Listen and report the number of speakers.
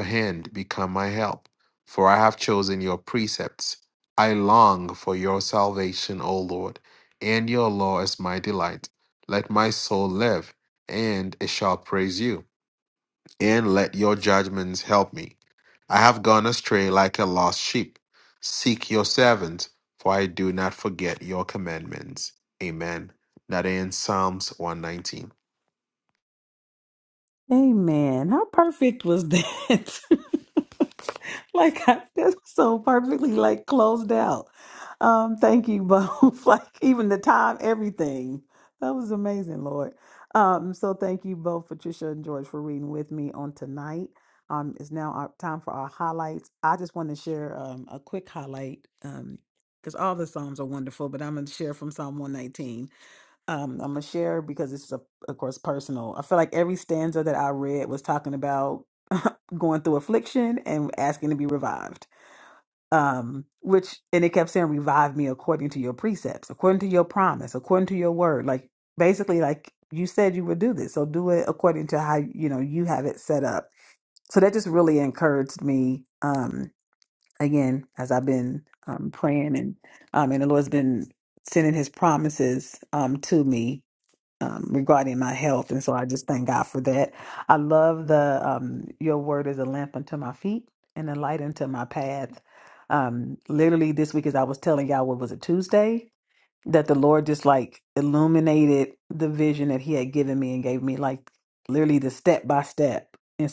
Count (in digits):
2